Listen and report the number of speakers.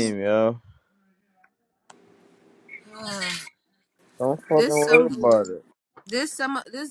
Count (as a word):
two